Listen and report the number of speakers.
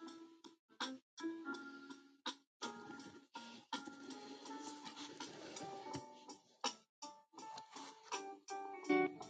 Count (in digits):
0